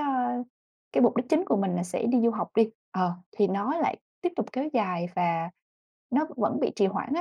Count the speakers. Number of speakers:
one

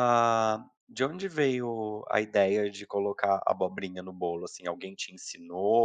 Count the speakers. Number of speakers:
one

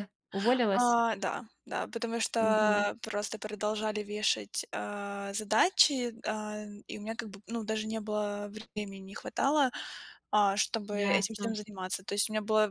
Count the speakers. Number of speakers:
two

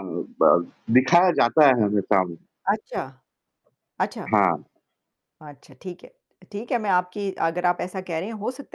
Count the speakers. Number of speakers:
two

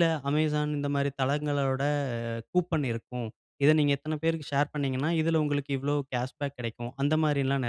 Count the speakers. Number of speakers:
one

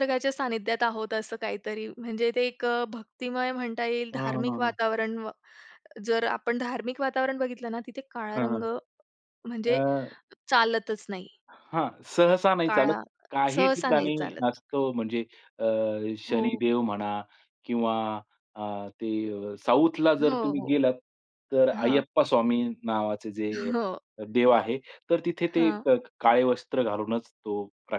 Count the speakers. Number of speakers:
two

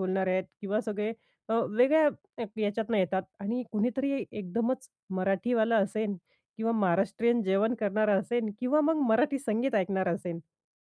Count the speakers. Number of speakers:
one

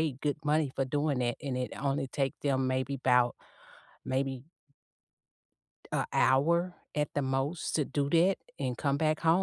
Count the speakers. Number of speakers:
one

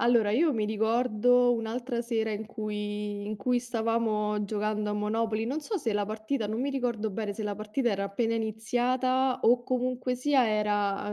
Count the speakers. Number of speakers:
one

